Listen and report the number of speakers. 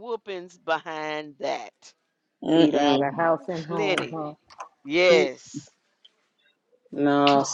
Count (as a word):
three